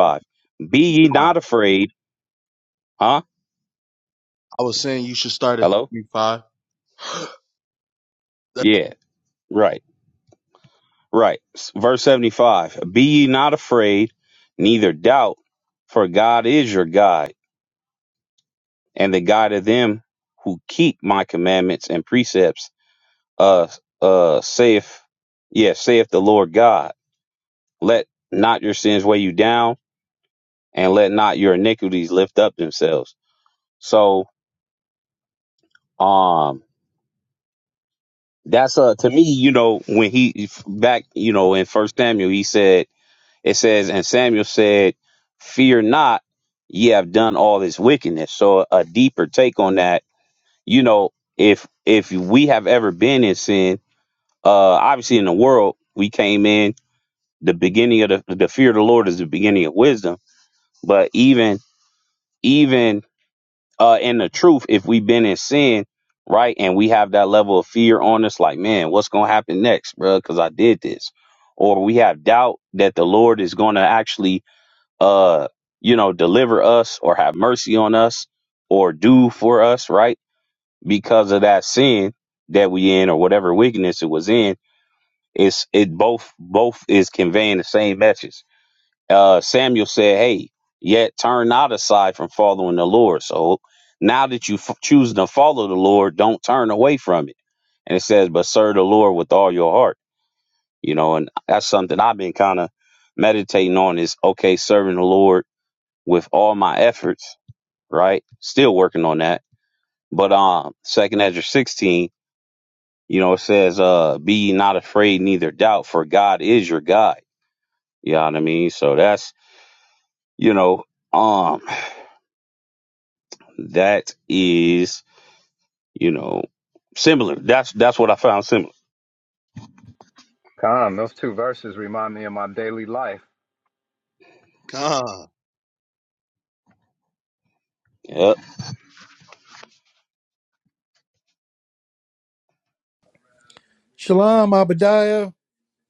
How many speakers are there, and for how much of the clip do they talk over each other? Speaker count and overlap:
4, under 1%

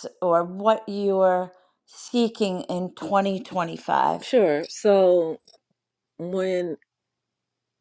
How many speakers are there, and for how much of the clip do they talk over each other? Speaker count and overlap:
2, no overlap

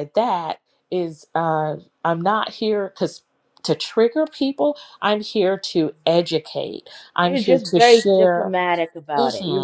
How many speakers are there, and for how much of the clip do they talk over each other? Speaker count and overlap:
2, about 18%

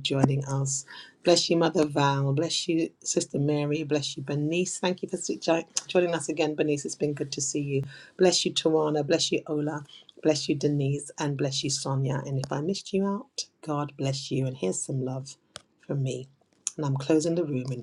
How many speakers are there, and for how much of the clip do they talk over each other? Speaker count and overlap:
1, no overlap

